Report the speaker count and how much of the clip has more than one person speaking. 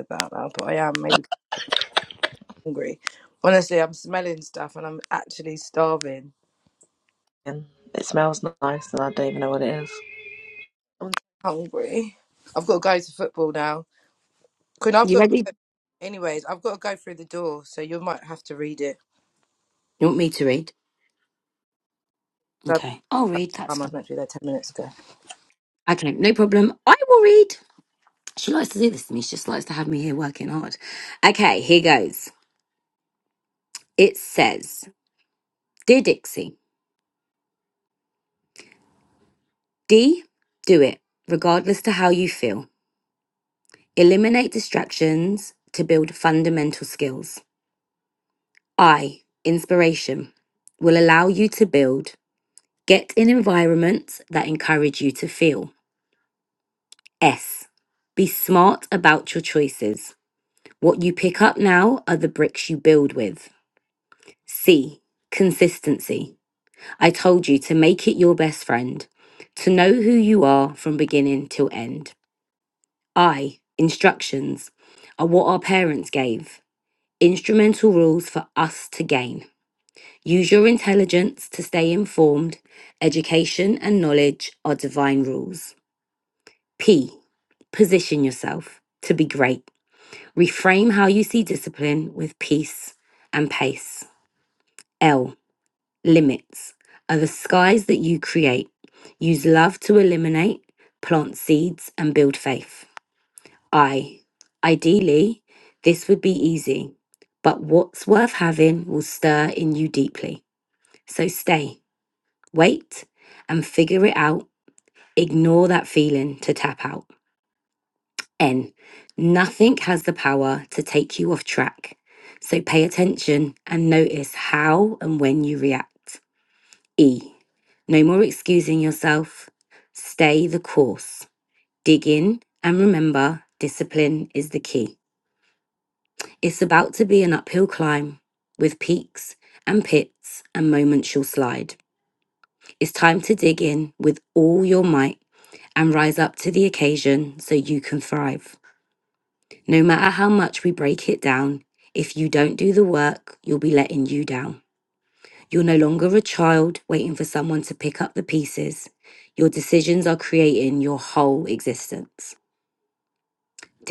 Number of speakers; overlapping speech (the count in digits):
3, under 1%